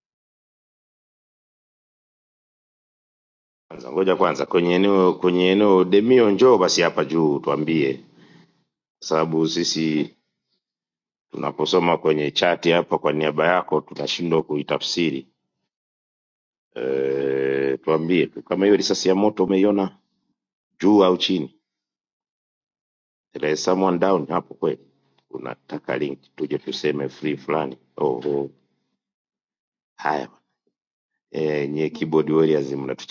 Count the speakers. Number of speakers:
one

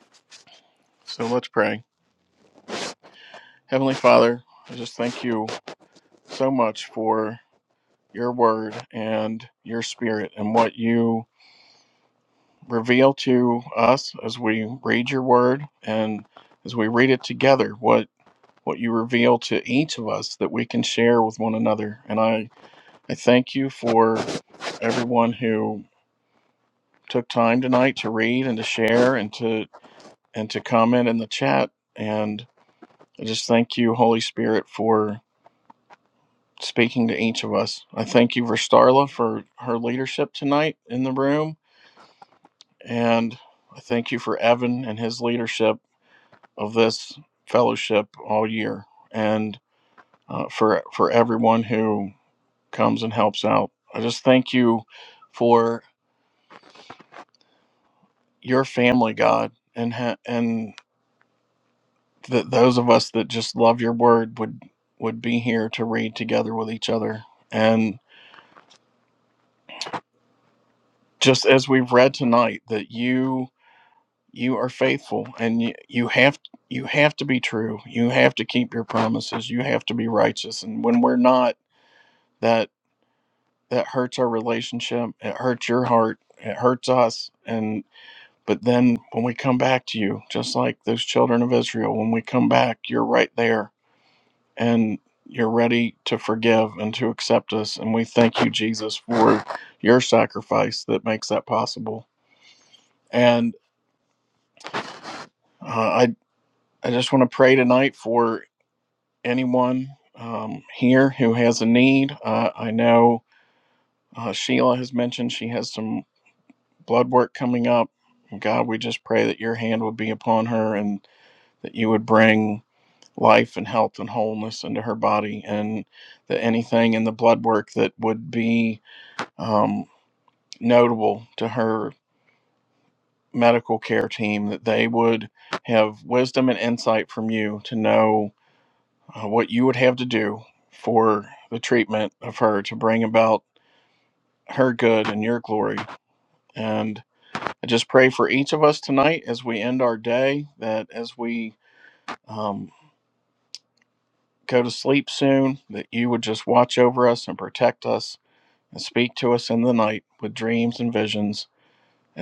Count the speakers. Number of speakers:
one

